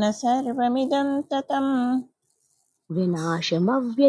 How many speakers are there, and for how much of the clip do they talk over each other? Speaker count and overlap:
2, no overlap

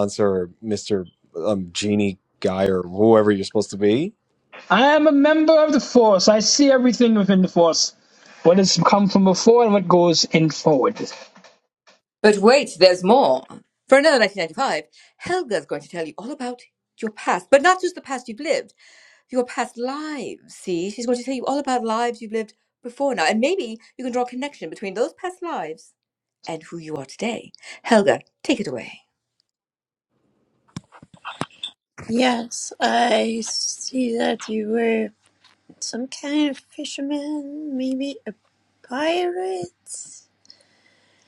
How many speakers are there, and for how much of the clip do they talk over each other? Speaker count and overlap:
4, no overlap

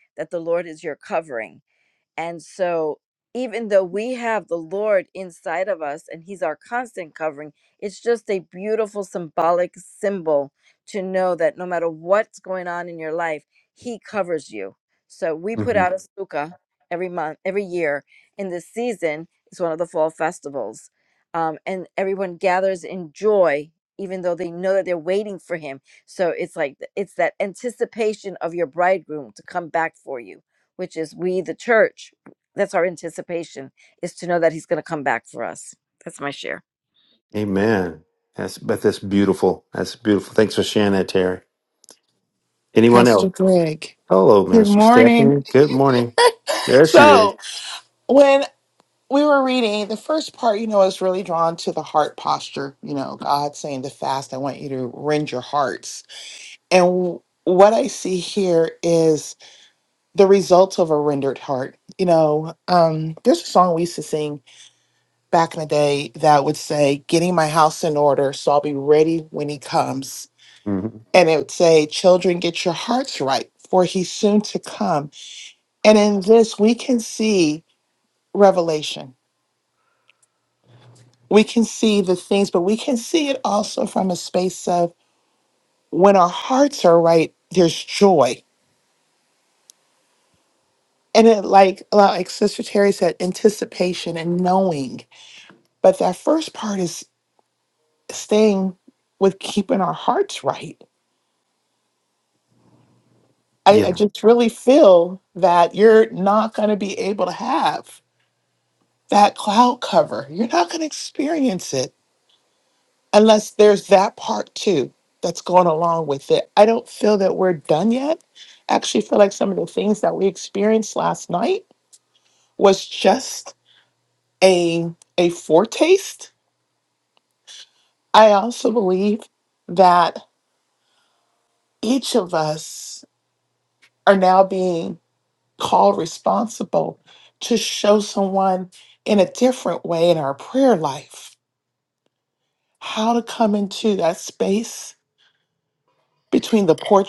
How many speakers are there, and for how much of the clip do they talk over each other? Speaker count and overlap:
3, about 2%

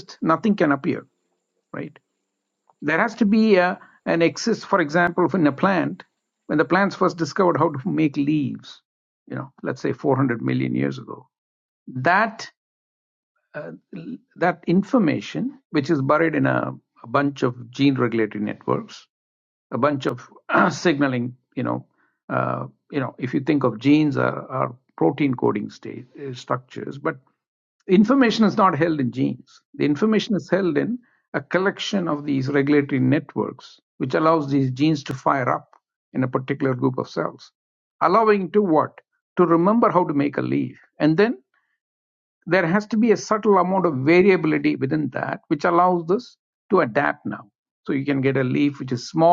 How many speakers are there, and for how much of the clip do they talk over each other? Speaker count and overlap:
1, no overlap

